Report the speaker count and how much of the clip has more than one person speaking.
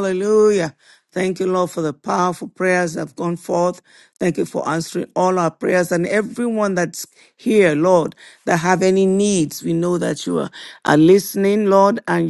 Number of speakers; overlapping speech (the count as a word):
one, no overlap